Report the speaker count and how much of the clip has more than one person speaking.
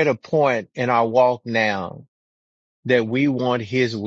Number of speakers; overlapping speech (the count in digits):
1, no overlap